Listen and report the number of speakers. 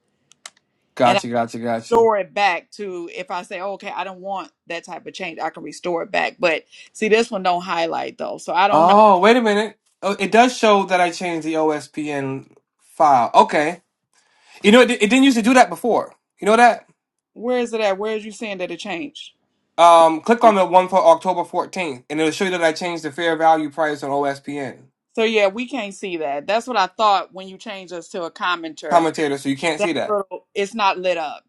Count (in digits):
2